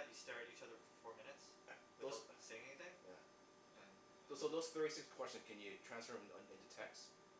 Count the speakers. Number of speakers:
two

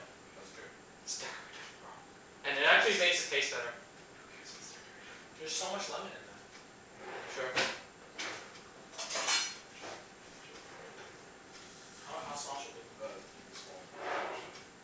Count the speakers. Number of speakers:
three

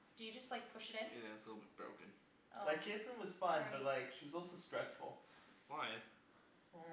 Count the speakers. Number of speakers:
three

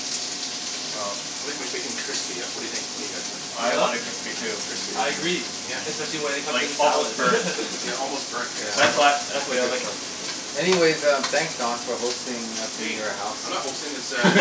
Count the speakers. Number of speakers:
four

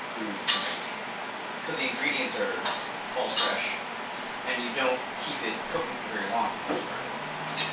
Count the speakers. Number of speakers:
one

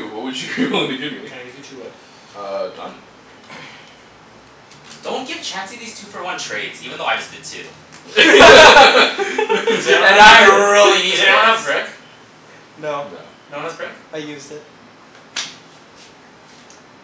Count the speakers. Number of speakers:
four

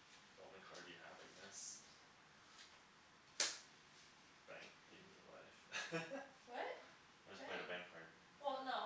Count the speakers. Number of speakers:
two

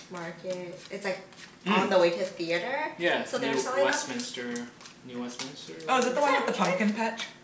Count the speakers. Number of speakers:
three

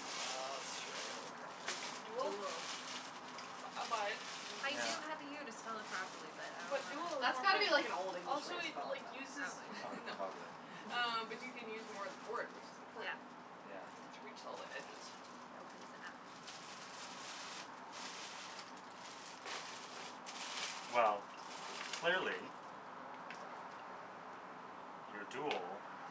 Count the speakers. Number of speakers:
four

